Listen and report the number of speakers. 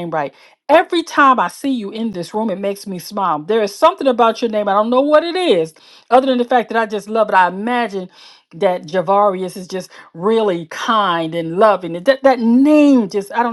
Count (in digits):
1